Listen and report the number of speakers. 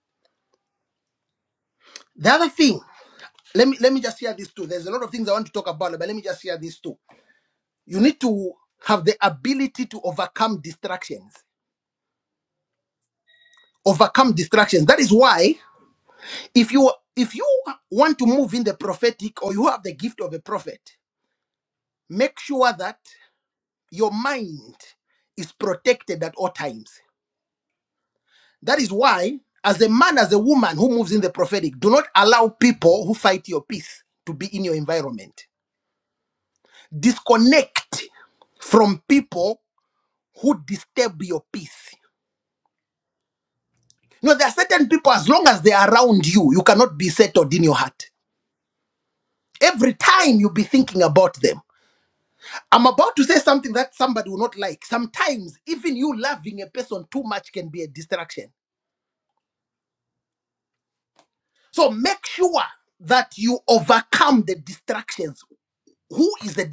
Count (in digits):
1